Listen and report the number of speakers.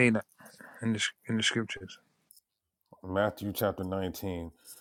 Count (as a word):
two